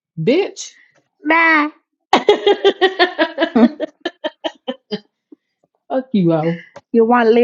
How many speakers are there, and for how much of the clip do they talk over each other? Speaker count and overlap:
2, no overlap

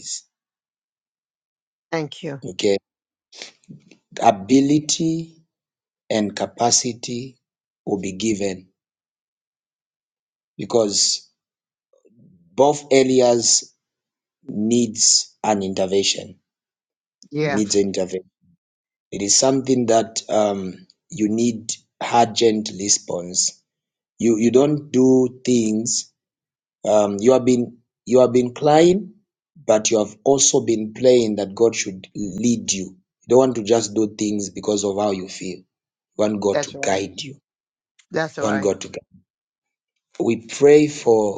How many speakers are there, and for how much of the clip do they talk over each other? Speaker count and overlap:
2, about 2%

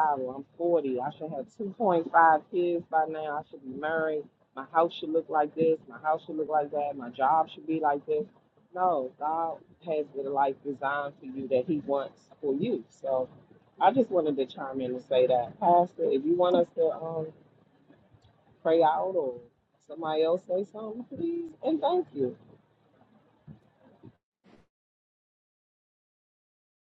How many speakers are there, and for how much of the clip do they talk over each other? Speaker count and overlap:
1, no overlap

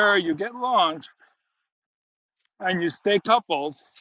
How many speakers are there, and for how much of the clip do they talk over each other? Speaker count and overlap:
1, no overlap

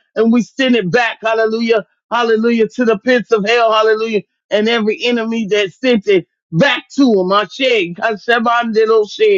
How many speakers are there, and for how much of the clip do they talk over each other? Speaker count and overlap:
1, no overlap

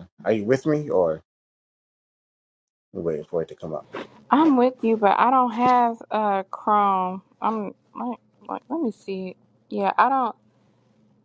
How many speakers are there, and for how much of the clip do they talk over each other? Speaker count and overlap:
2, no overlap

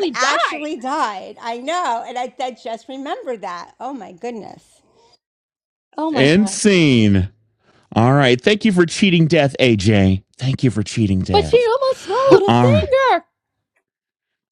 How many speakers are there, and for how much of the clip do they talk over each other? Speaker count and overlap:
3, about 12%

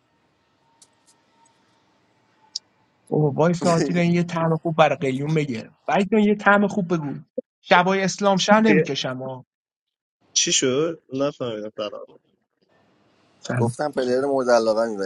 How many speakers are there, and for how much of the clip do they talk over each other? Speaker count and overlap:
3, about 2%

